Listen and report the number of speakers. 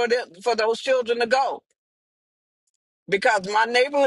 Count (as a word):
one